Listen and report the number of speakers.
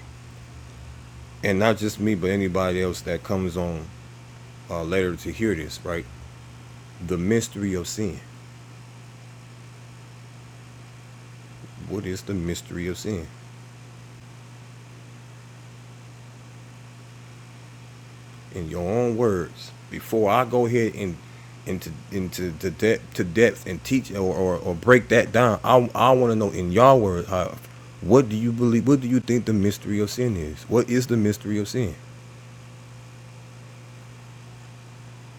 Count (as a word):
one